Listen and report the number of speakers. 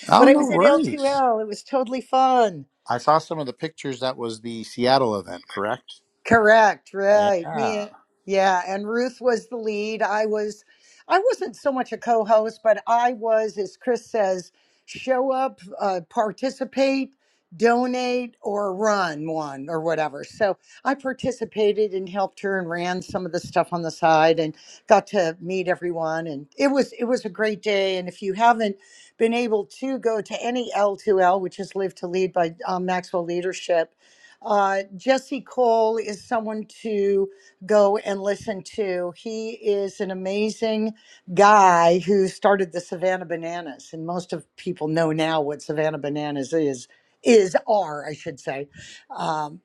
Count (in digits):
2